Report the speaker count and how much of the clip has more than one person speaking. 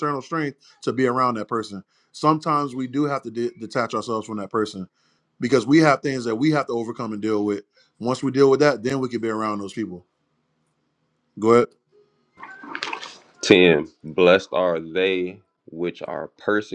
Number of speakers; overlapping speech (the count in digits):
2, no overlap